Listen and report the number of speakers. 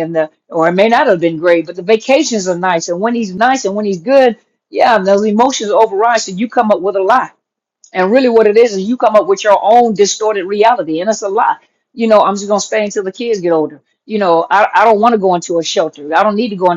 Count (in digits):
1